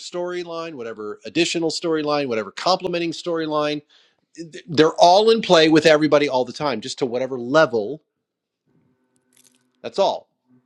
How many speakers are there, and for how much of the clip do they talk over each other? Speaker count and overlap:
1, no overlap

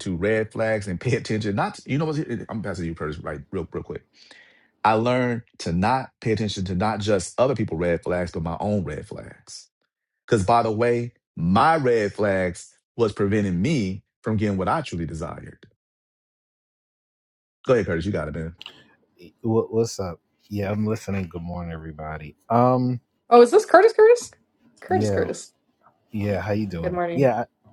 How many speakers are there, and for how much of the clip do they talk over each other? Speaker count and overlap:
3, about 3%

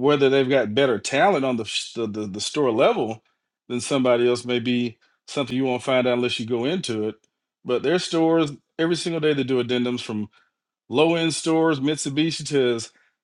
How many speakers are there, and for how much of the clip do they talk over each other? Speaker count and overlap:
1, no overlap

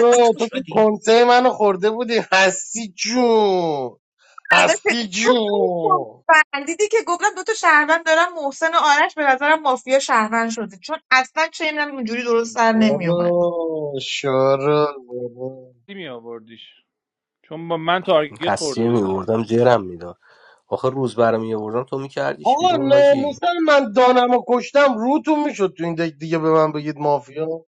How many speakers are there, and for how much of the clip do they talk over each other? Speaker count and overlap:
4, about 11%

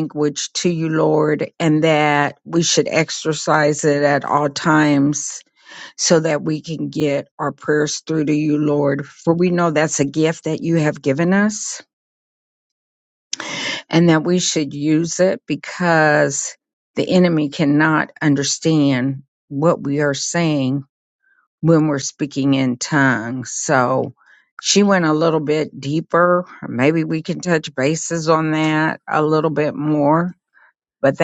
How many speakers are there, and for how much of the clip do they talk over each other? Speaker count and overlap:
1, no overlap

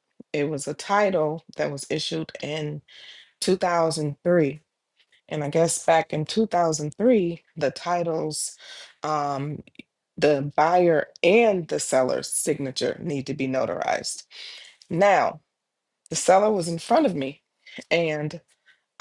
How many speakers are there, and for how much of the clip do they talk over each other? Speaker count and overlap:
1, no overlap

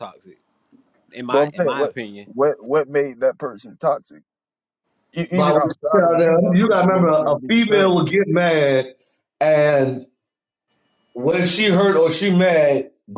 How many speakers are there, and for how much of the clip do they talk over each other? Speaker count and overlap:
3, about 25%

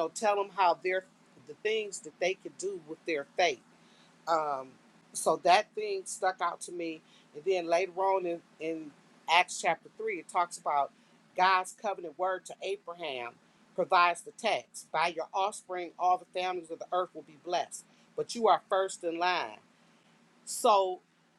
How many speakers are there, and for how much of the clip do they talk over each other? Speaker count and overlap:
1, no overlap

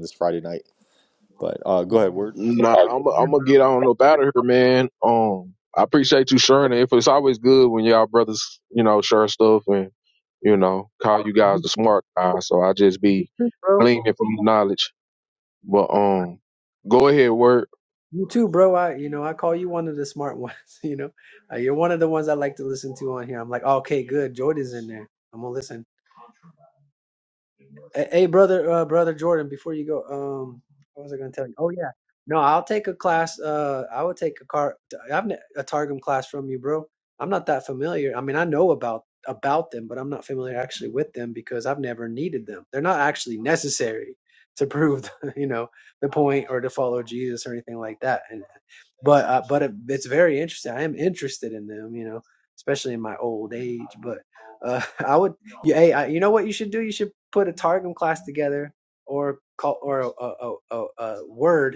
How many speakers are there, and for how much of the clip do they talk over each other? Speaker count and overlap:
3, under 1%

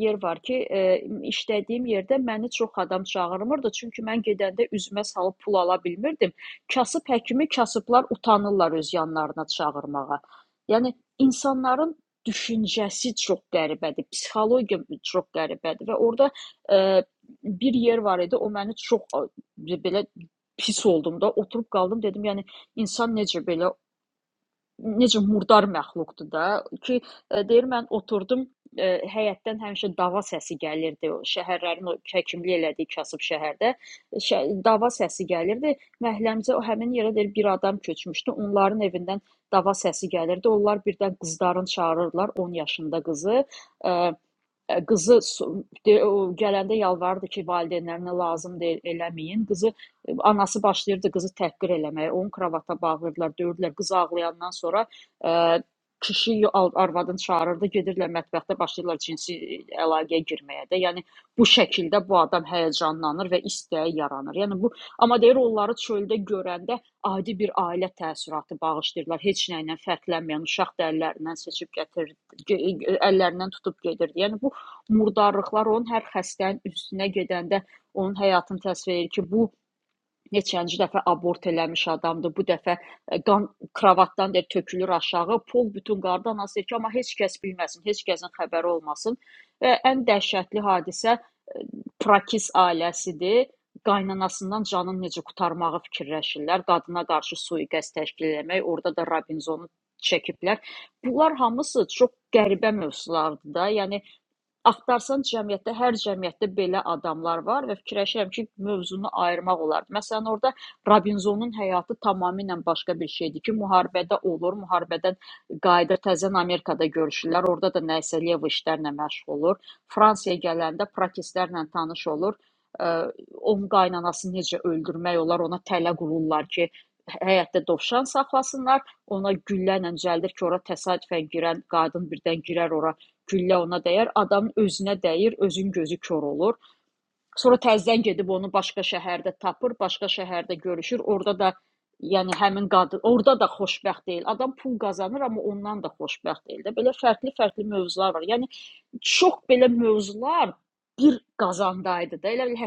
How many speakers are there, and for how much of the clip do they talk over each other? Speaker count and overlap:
1, no overlap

